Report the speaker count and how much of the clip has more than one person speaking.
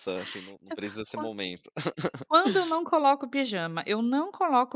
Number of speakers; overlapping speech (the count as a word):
two, about 3%